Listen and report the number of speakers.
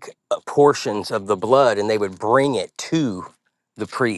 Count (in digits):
1